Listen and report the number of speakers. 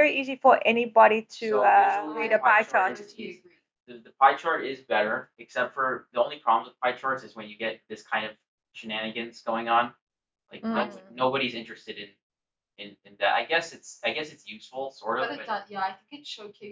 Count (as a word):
three